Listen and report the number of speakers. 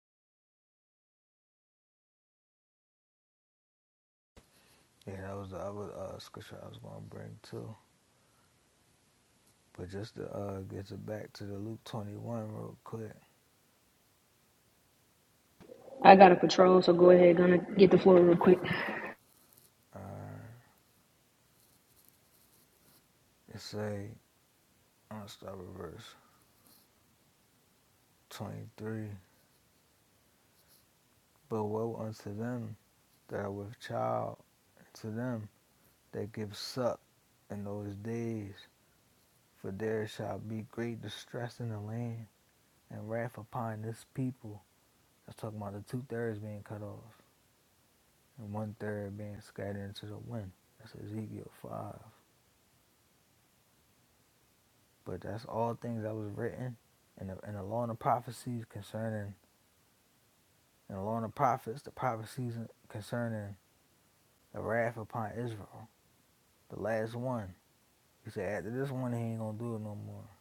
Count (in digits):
2